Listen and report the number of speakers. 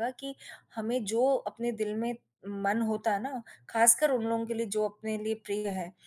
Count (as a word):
one